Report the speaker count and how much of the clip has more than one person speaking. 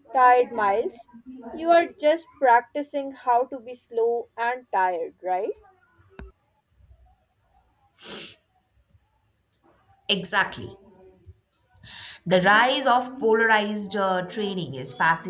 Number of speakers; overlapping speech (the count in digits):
2, no overlap